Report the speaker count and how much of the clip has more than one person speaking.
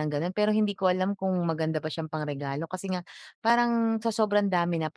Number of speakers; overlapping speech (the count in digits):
1, no overlap